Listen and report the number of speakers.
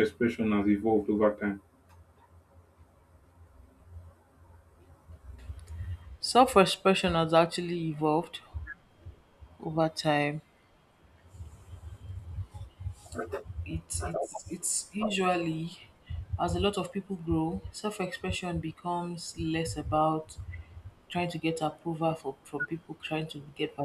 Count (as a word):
two